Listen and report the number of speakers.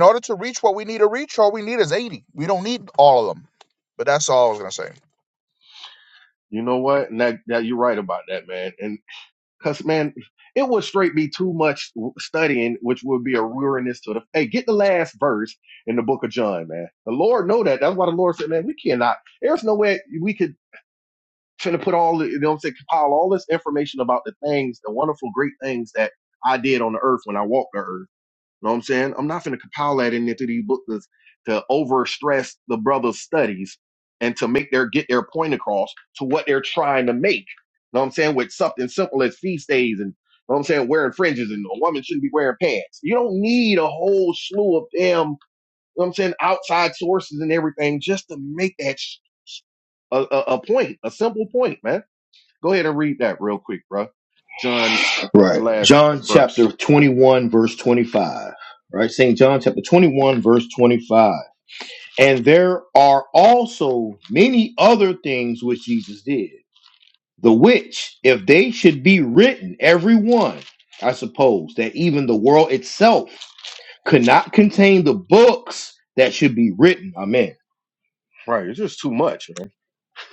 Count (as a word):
three